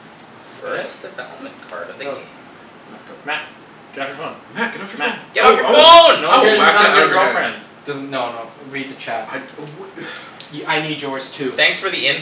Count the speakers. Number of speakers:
four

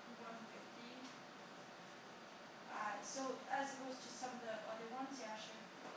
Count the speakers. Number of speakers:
one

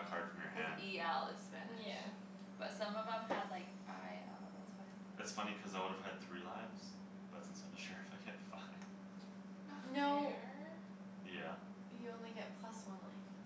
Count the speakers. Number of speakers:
three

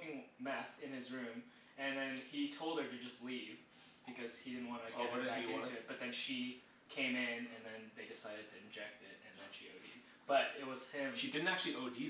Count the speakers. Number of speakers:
two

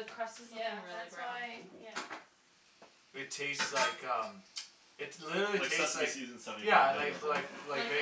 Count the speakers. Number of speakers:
four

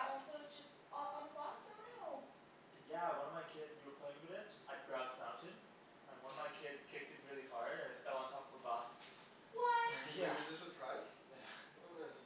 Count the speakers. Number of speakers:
three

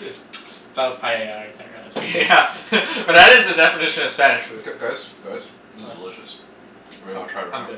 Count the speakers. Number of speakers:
three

